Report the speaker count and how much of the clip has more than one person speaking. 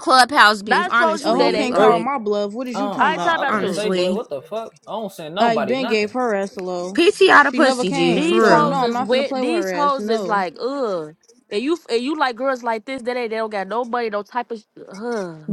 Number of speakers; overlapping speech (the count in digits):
4, about 42%